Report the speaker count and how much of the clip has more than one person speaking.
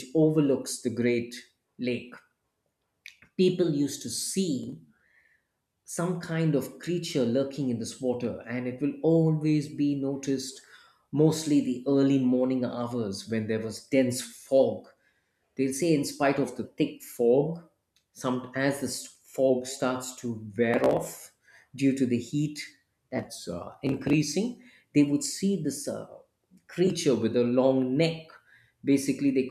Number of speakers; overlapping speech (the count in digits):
1, no overlap